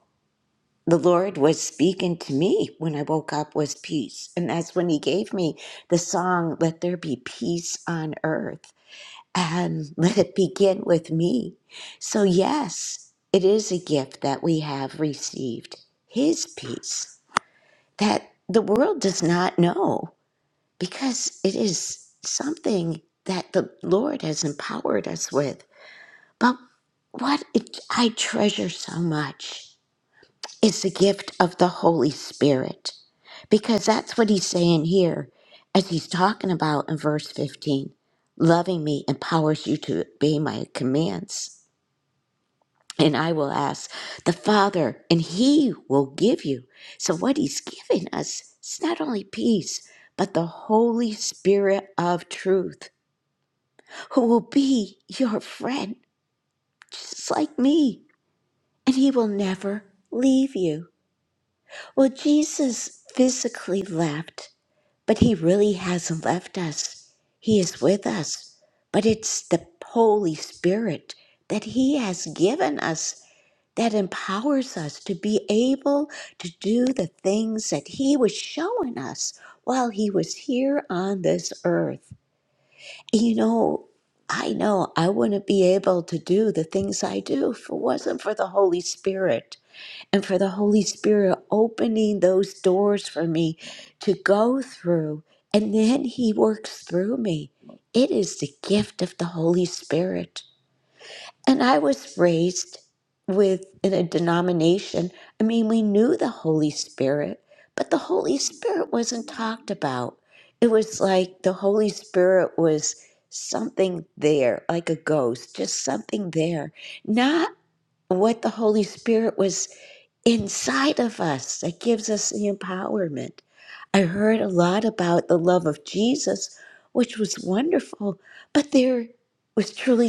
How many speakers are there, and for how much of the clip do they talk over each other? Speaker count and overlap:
1, no overlap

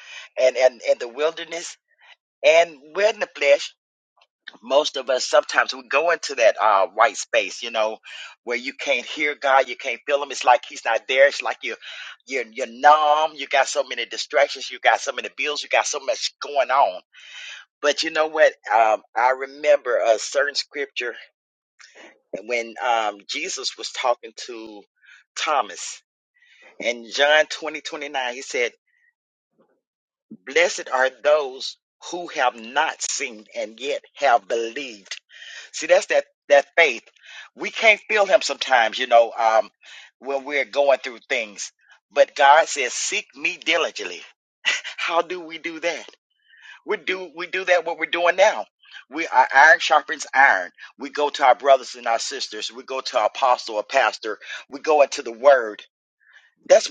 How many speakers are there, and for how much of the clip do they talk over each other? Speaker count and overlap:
1, no overlap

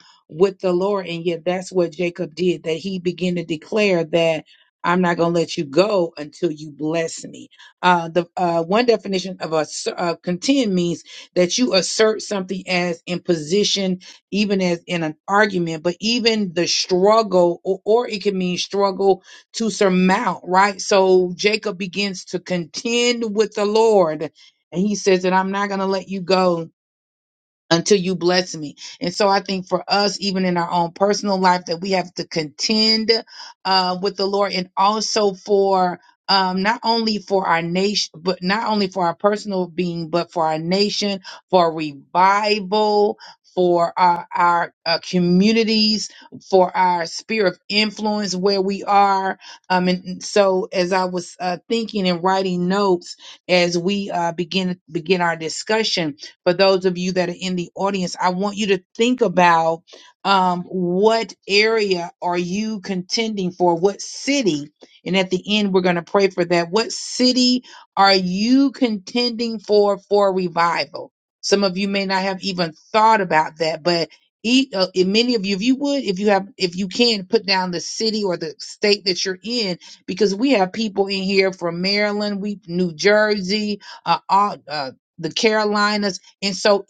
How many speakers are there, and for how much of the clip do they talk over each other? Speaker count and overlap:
1, no overlap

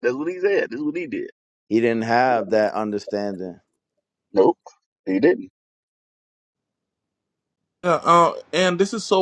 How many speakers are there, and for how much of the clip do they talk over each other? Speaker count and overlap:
3, no overlap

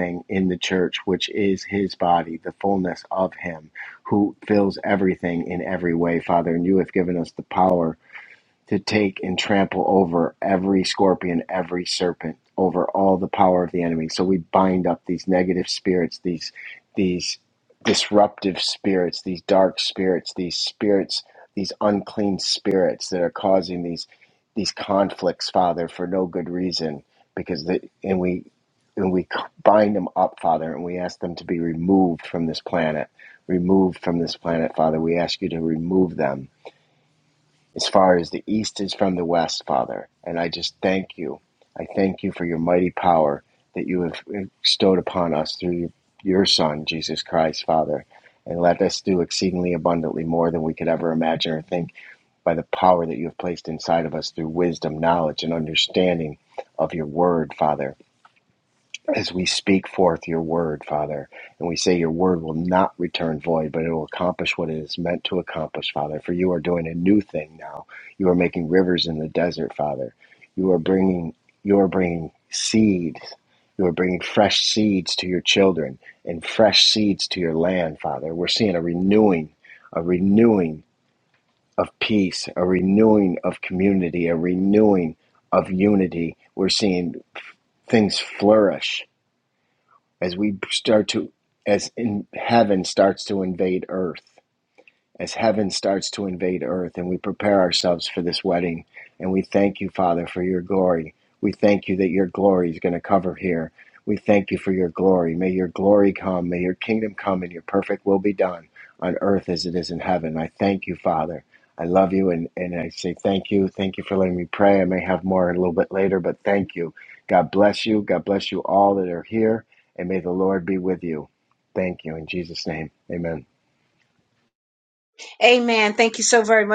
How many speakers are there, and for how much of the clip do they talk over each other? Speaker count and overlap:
2, no overlap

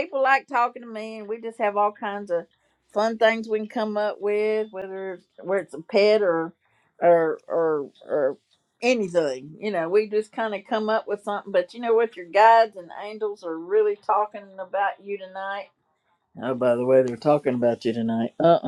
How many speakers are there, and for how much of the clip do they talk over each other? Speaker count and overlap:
1, no overlap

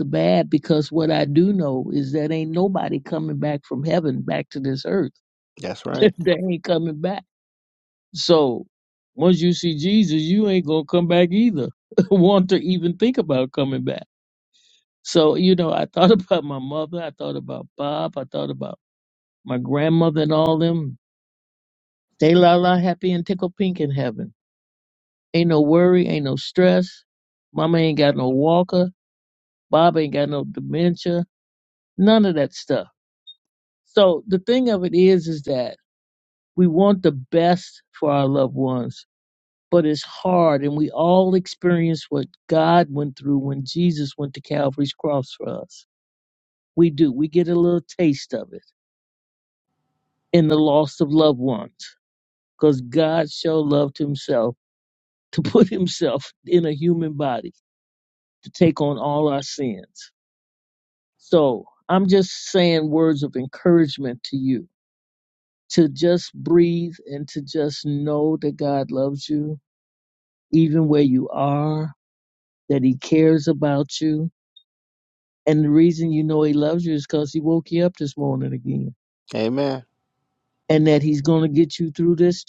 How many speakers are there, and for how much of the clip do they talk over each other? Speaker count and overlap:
2, under 1%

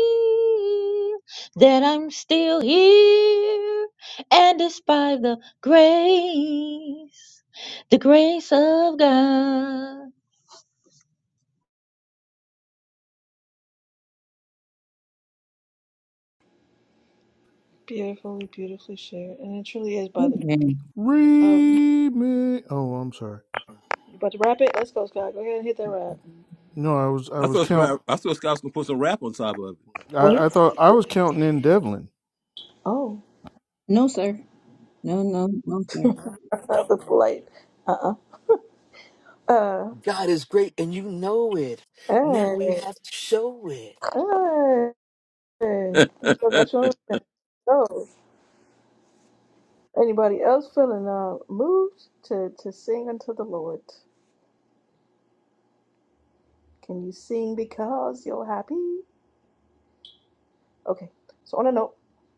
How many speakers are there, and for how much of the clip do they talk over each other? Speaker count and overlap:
6, about 4%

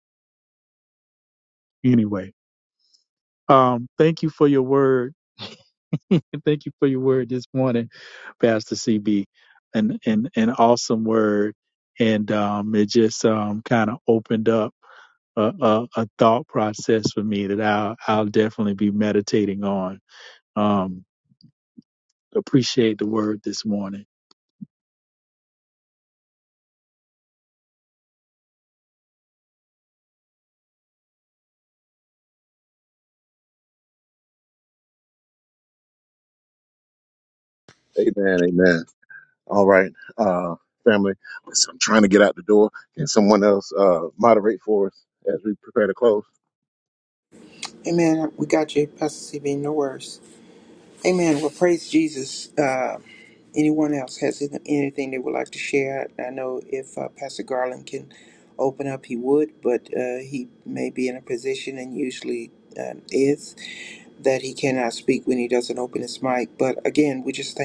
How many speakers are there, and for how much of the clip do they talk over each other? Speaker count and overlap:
3, no overlap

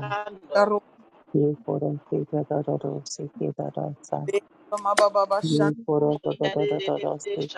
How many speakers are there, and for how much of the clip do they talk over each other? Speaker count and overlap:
3, about 20%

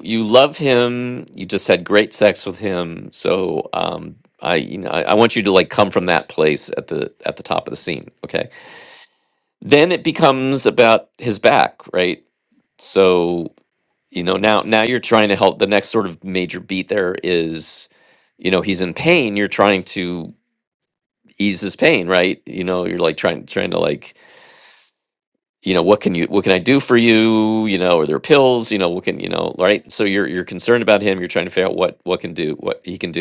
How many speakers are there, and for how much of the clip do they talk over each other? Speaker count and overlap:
1, no overlap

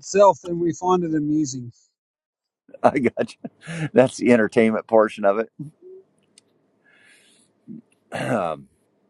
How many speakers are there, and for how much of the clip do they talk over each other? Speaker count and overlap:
2, no overlap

